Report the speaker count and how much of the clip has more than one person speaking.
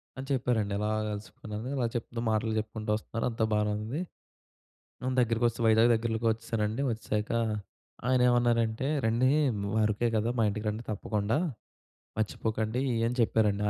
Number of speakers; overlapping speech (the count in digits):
1, no overlap